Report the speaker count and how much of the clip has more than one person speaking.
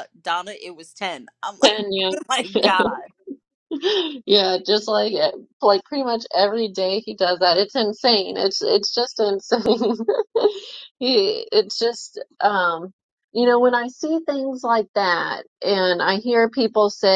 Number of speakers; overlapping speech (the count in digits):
2, about 3%